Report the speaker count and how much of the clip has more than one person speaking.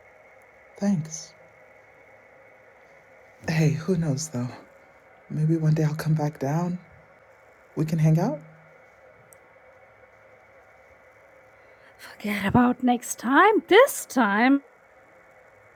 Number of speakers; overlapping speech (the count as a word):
two, no overlap